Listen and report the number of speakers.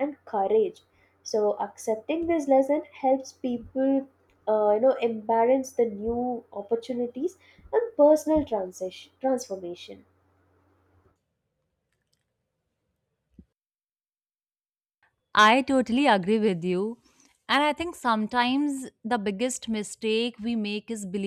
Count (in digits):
2